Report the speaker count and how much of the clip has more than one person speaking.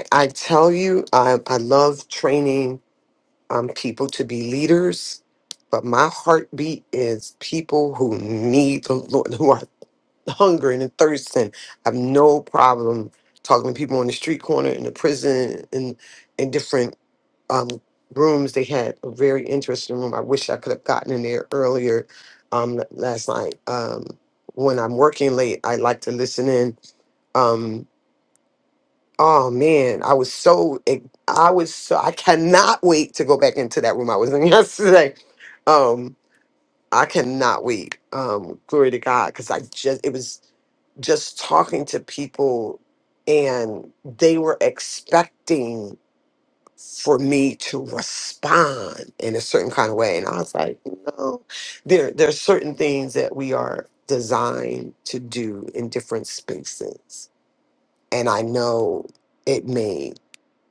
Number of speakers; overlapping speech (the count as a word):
one, no overlap